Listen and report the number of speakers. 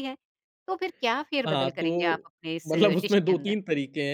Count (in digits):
2